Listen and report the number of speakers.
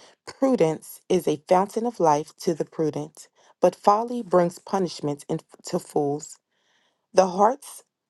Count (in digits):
1